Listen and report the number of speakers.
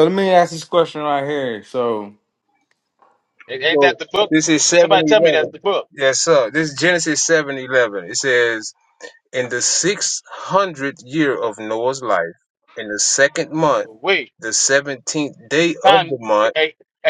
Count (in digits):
3